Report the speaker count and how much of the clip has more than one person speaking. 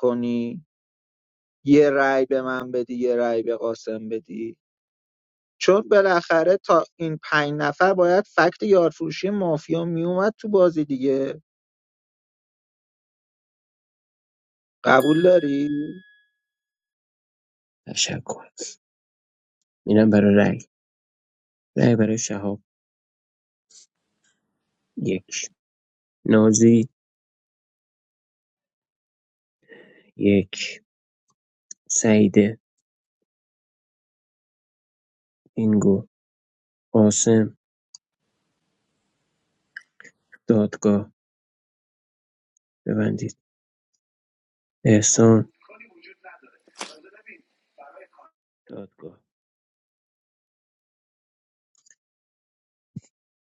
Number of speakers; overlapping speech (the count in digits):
2, no overlap